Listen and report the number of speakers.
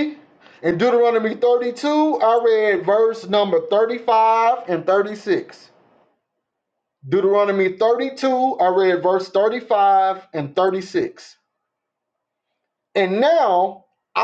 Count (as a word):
one